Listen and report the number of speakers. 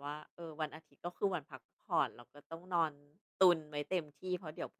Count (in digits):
1